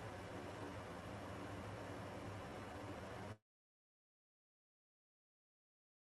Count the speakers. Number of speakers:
0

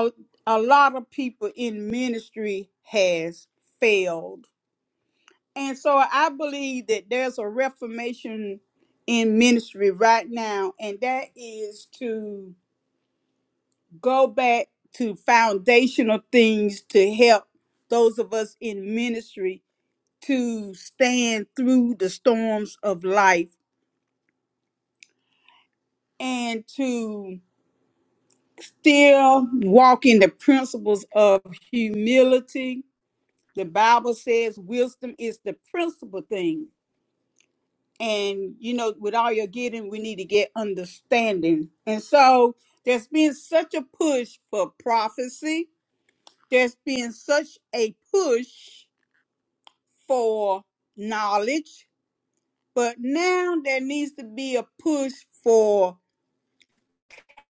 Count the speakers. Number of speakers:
1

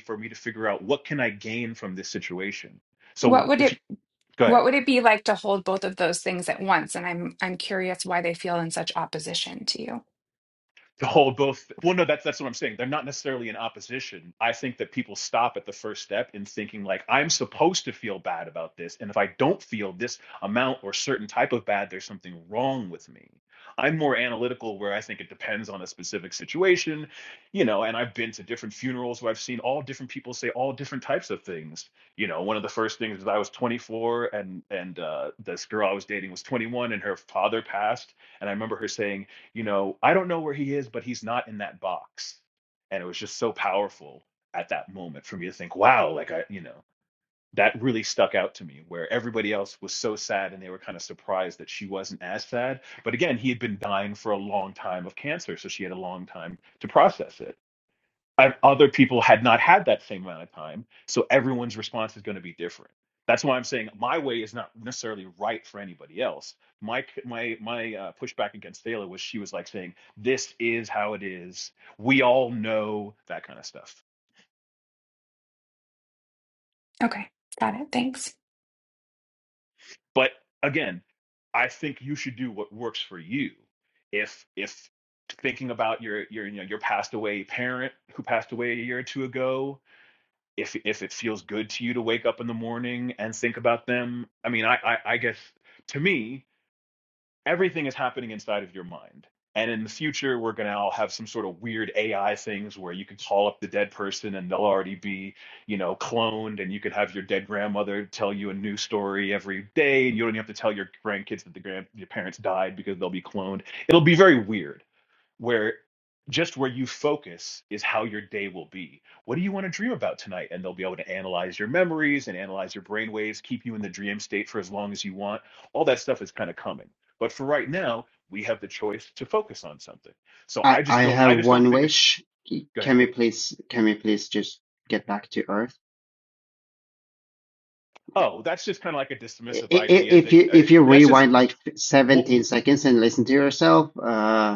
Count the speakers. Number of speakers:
3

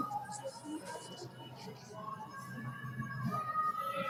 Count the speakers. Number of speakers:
0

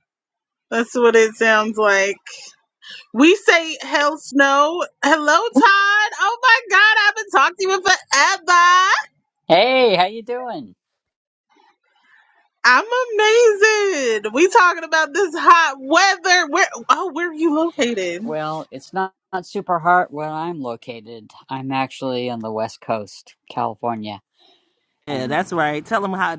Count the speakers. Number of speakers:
3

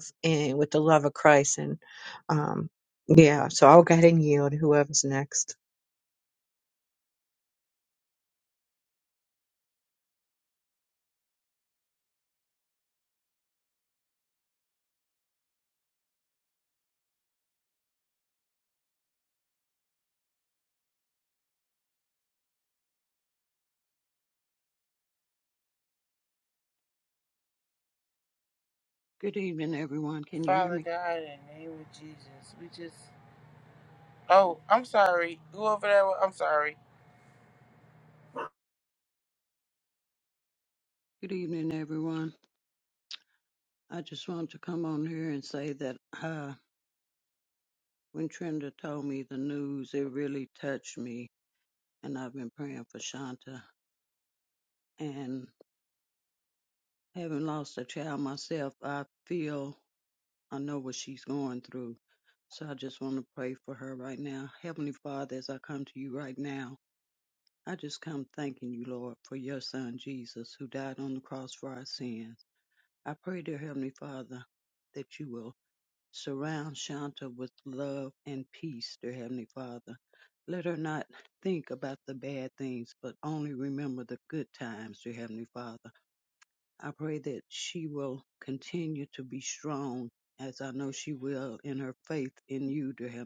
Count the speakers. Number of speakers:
3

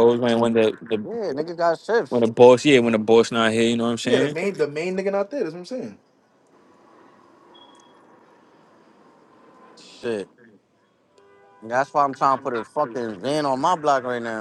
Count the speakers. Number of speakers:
3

